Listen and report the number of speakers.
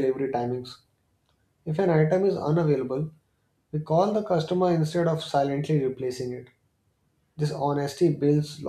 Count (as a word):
one